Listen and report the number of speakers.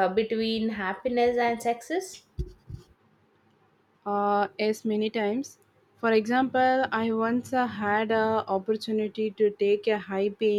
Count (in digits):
2